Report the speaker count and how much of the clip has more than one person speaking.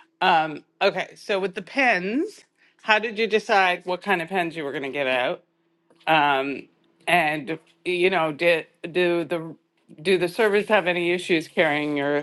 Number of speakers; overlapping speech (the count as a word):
one, no overlap